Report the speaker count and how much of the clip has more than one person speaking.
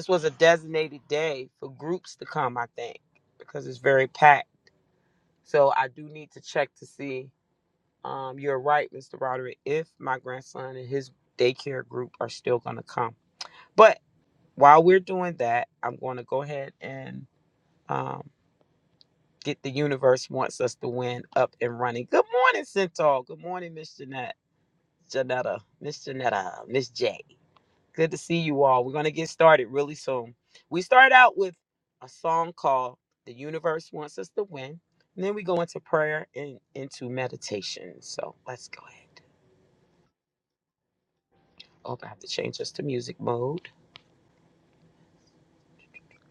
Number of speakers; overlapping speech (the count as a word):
one, no overlap